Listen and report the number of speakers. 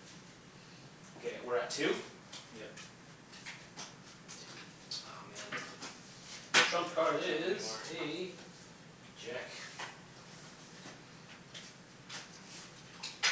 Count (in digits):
2